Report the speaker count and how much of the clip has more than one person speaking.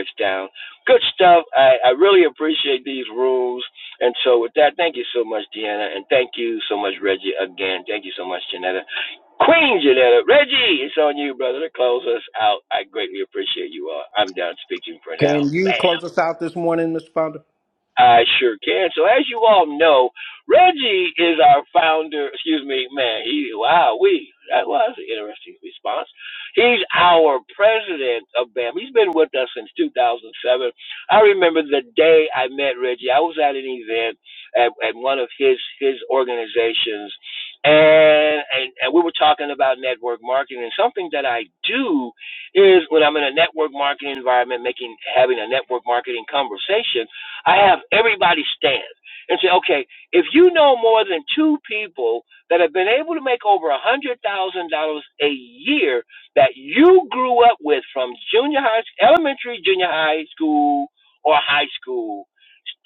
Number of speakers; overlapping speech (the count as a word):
two, about 1%